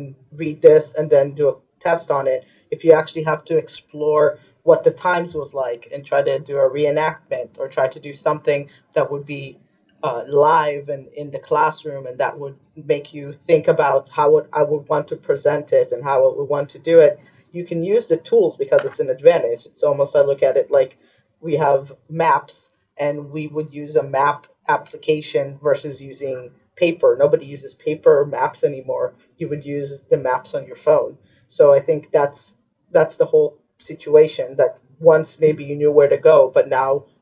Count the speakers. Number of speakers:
one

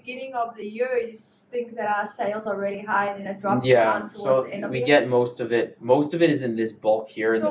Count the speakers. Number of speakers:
two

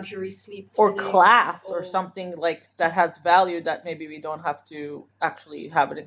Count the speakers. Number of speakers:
two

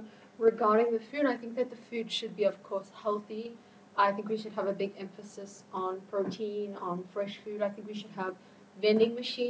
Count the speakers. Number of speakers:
one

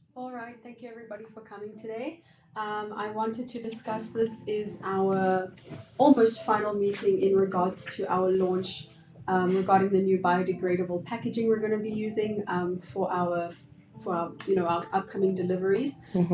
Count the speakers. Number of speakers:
one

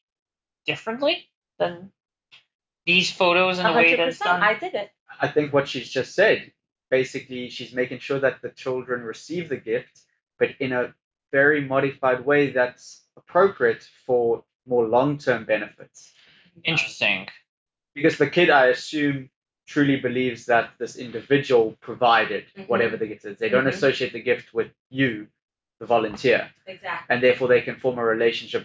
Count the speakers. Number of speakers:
three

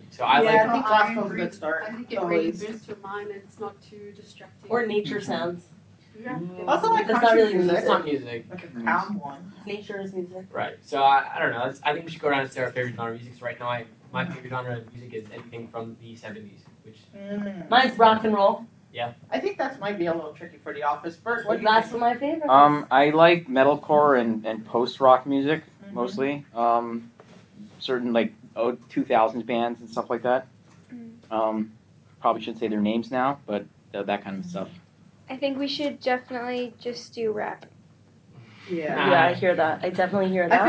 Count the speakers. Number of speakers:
six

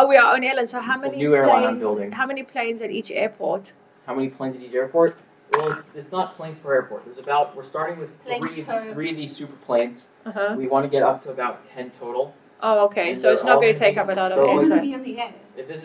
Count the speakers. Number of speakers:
three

